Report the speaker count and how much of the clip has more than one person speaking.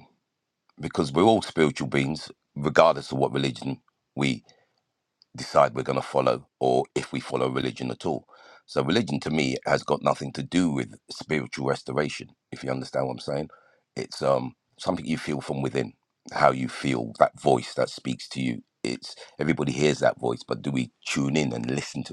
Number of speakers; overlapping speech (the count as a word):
one, no overlap